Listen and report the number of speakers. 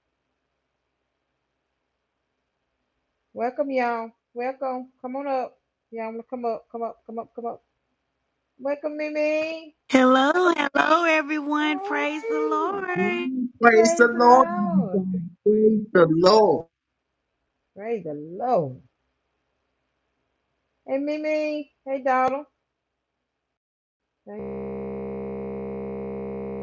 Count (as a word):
three